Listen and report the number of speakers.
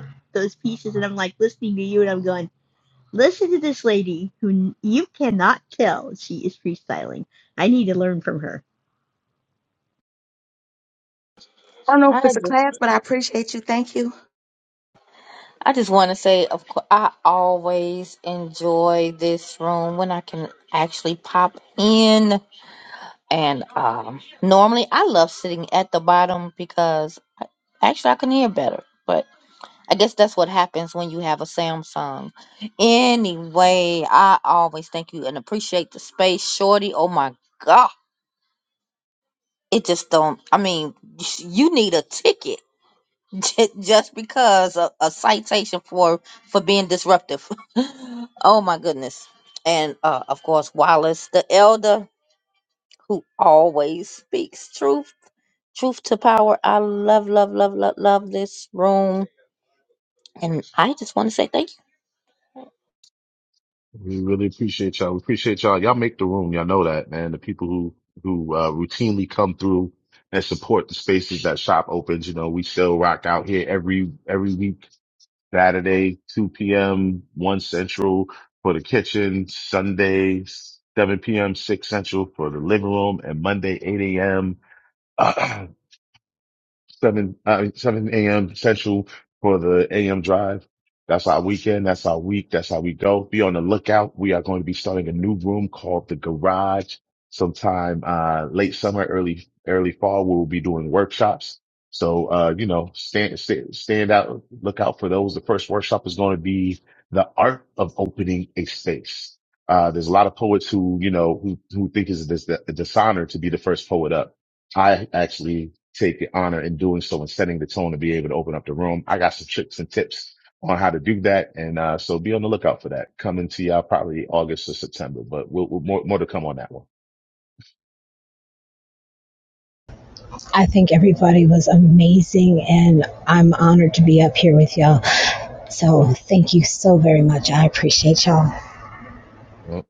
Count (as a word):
five